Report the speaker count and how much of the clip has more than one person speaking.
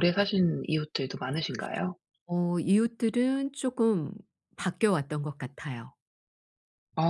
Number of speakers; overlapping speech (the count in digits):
2, no overlap